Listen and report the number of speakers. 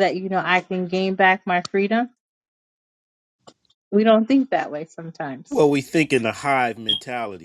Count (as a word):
two